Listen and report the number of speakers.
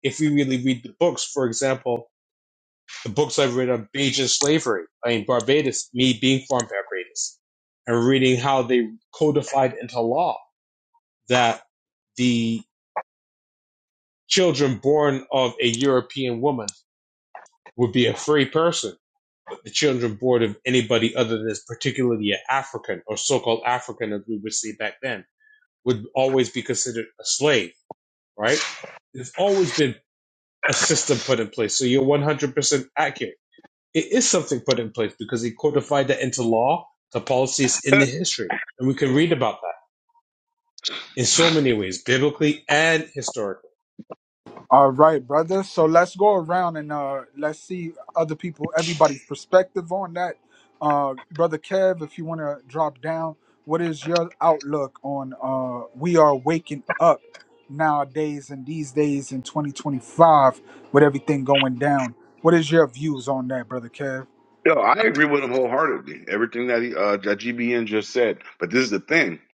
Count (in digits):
3